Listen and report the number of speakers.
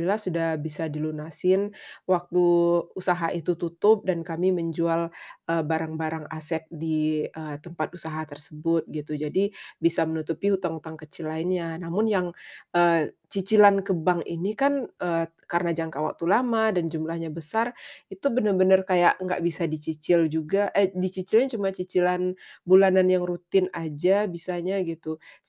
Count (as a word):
one